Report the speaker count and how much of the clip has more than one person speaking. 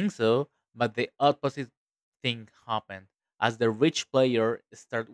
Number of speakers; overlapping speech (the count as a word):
one, no overlap